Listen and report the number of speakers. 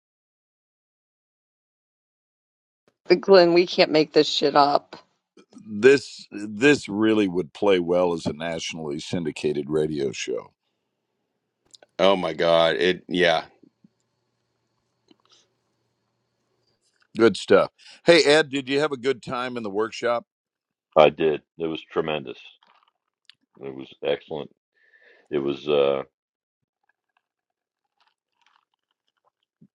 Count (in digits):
4